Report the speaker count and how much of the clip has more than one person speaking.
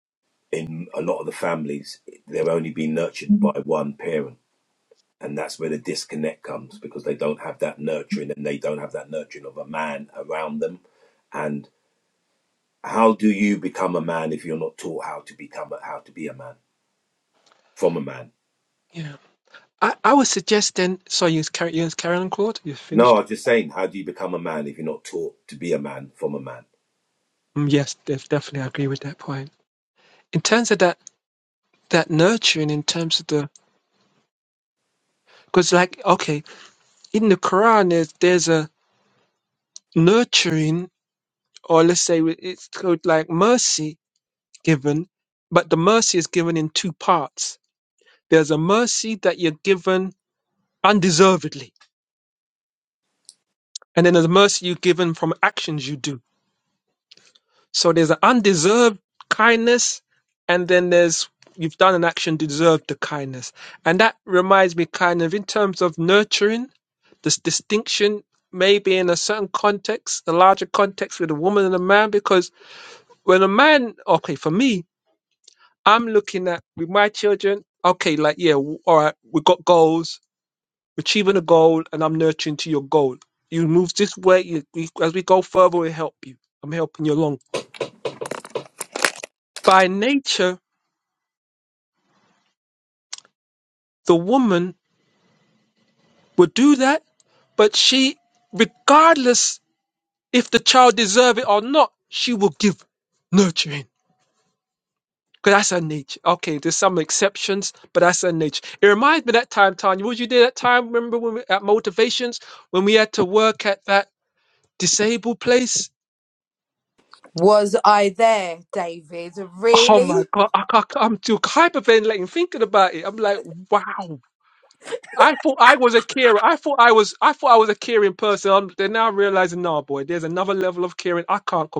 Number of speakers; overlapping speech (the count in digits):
3, under 1%